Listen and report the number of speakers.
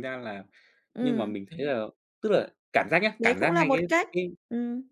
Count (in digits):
2